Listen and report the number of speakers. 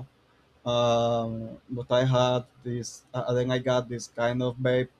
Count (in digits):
1